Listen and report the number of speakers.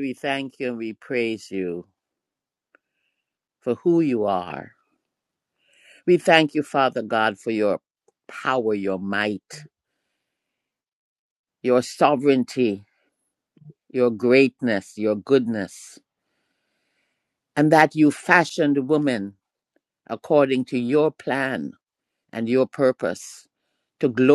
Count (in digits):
1